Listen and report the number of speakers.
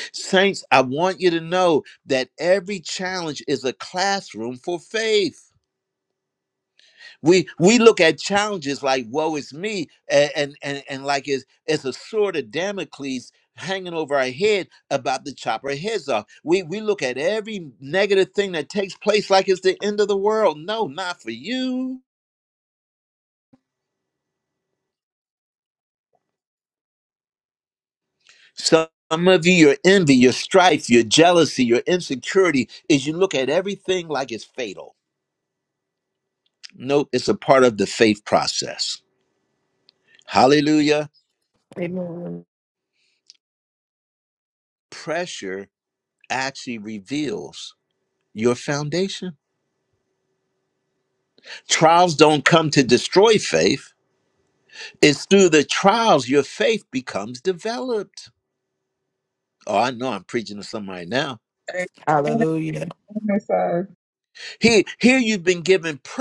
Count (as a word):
three